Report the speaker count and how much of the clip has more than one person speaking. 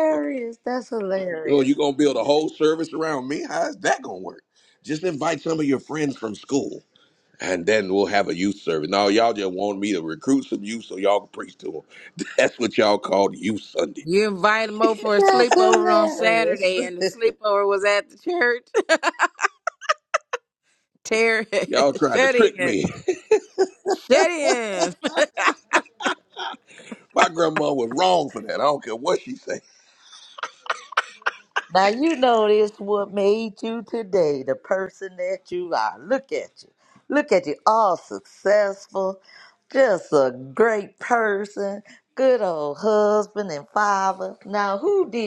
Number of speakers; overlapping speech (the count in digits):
3, about 5%